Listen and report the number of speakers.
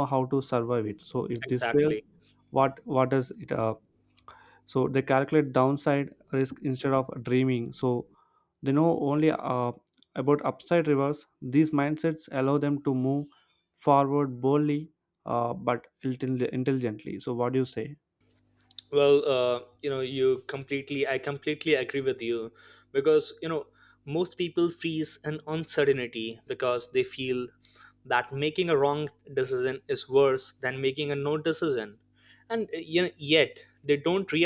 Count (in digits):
2